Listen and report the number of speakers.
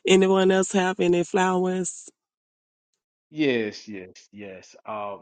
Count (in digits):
2